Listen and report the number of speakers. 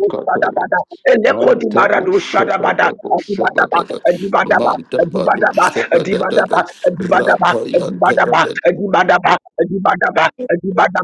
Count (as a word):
two